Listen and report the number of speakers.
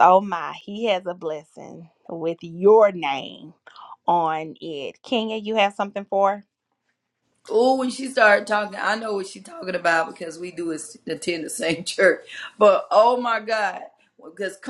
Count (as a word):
two